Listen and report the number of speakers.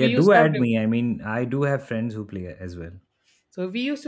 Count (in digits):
2